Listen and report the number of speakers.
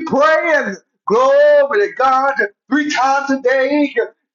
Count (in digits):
1